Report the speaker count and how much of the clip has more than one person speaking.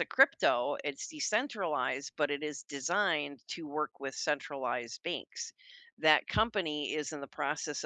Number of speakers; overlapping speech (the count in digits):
1, no overlap